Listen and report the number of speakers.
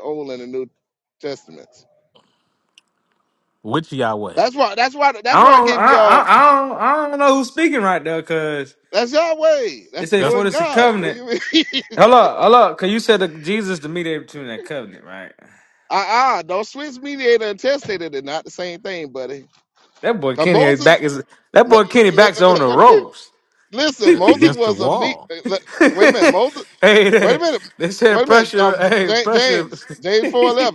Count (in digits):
3